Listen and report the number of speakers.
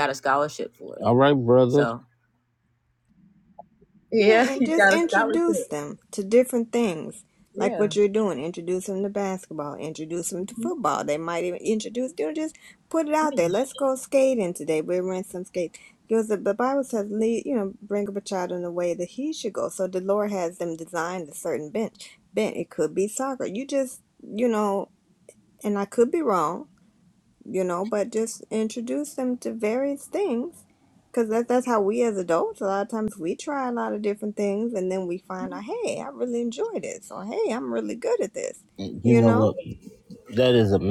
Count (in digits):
3